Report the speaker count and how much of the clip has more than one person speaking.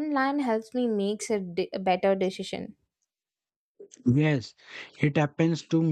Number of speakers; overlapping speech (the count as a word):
two, no overlap